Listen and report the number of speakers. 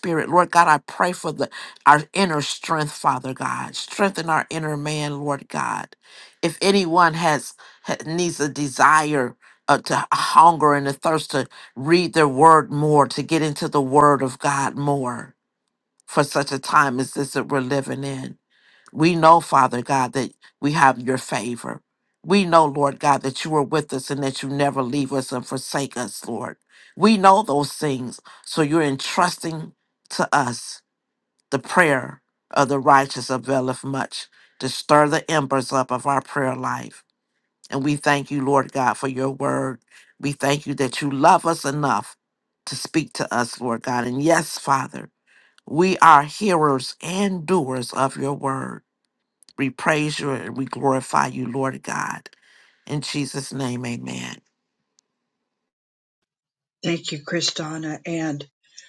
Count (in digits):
2